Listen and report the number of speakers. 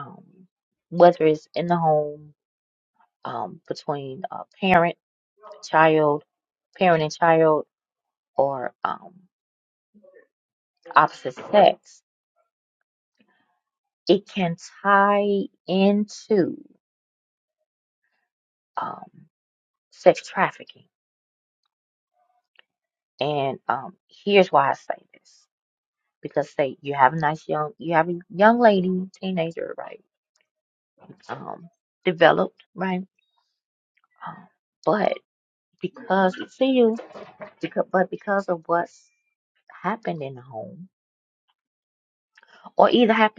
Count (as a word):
one